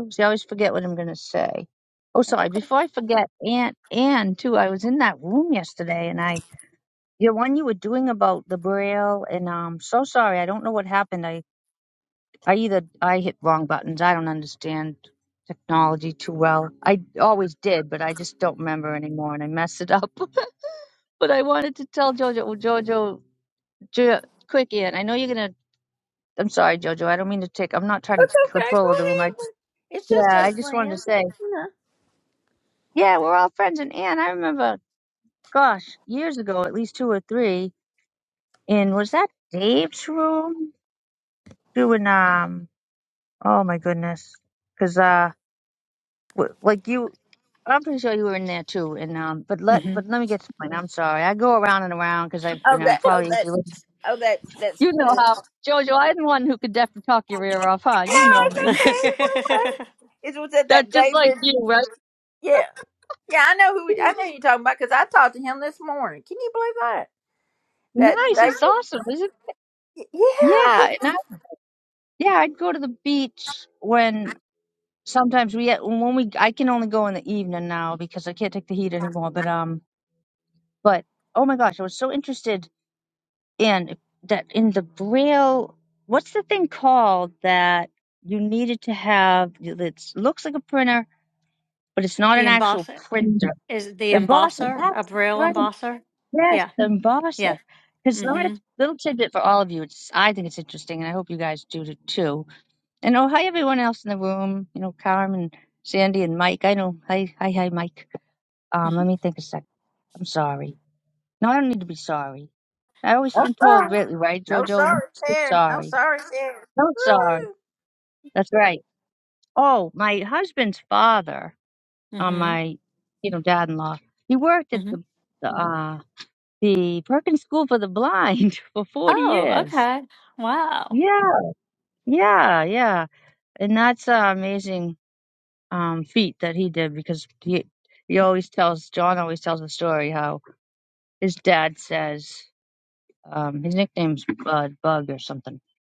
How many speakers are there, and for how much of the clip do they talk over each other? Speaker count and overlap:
three, about 9%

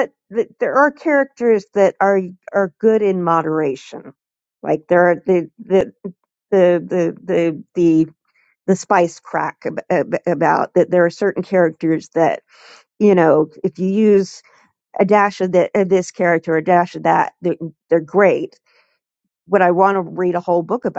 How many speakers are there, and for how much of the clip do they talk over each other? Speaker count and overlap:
one, no overlap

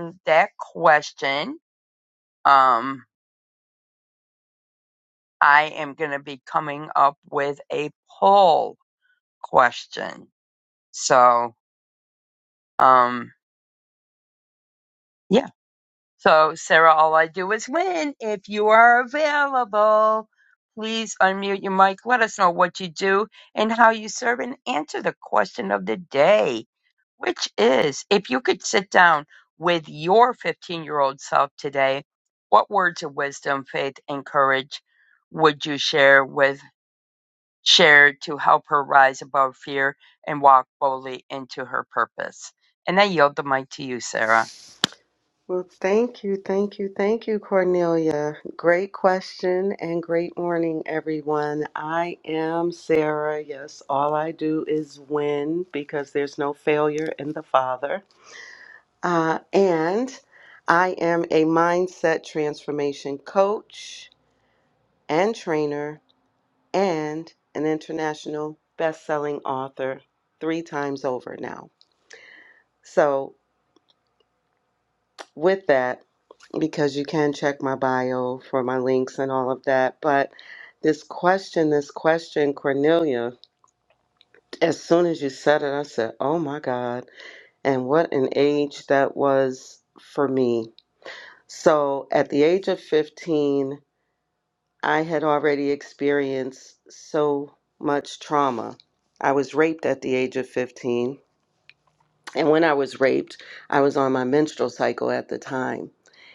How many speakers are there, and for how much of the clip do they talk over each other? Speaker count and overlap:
two, no overlap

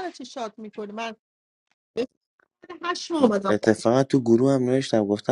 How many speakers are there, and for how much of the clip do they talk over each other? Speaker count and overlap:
two, about 1%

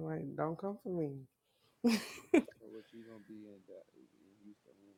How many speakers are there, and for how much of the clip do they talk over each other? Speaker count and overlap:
two, no overlap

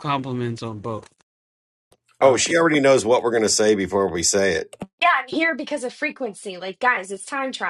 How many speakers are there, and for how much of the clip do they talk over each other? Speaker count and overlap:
three, about 3%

